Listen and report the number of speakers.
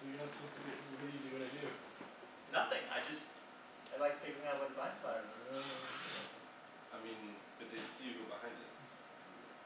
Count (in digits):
3